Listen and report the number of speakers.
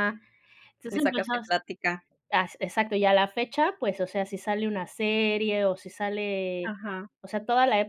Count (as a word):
two